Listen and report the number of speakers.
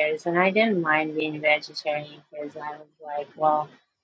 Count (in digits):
1